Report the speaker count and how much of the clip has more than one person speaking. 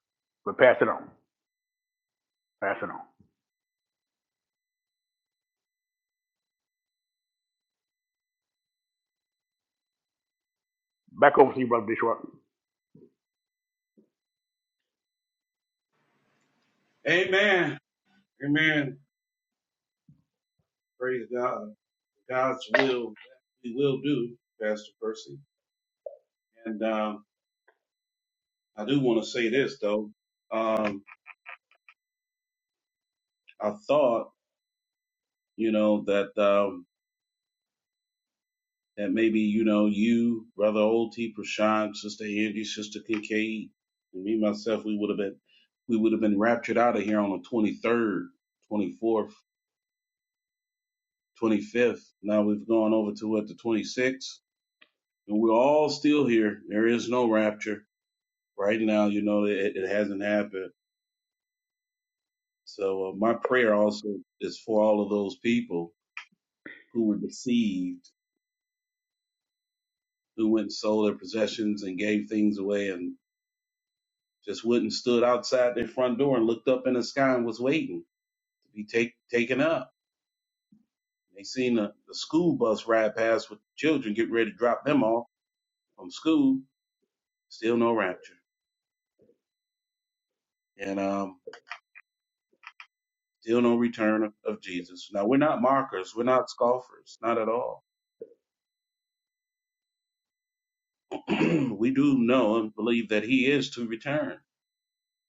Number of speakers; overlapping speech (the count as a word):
two, no overlap